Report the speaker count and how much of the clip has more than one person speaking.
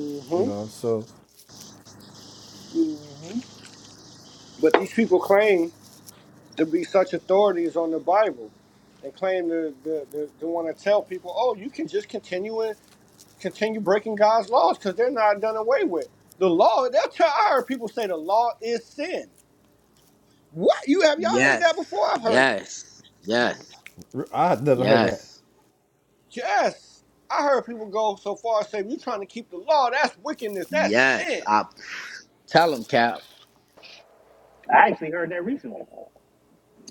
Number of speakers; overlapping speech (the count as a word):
four, about 5%